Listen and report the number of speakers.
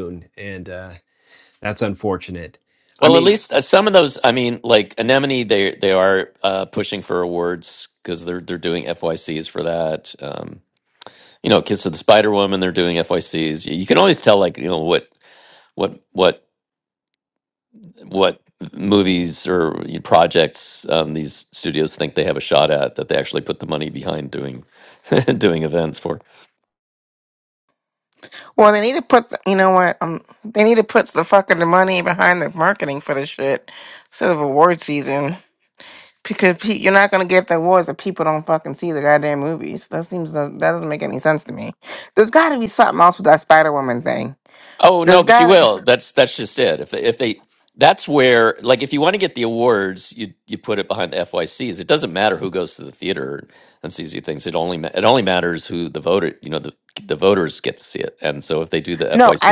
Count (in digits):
3